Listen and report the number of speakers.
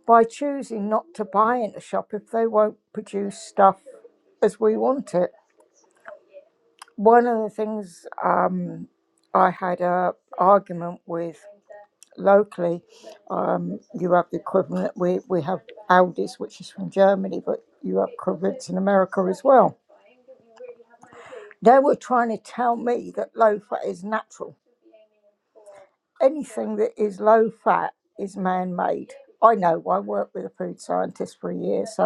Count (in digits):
1